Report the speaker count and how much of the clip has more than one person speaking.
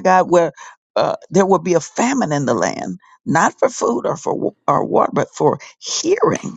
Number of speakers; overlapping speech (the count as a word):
one, no overlap